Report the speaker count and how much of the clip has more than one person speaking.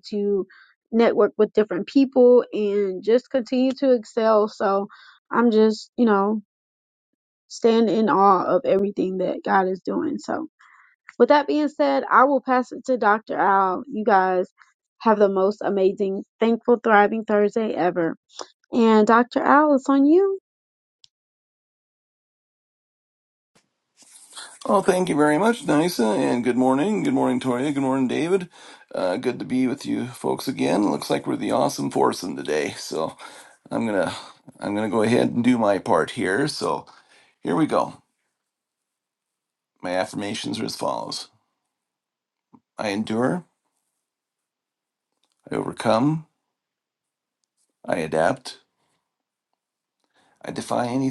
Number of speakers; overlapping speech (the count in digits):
2, no overlap